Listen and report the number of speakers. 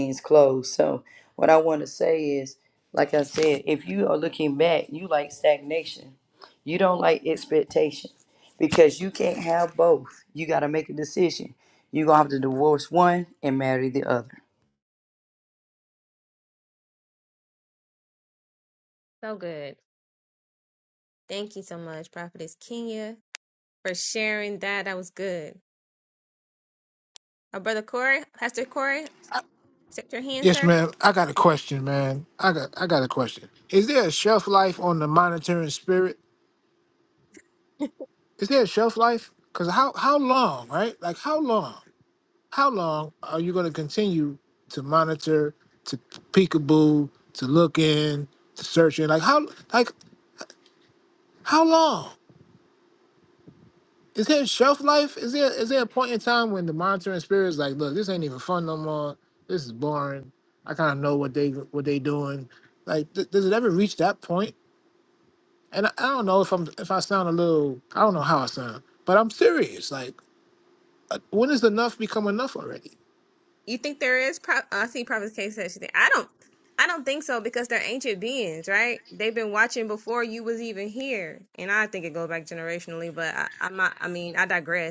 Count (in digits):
3